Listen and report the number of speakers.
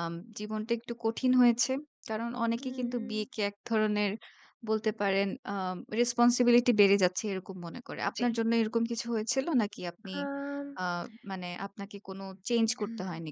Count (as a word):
two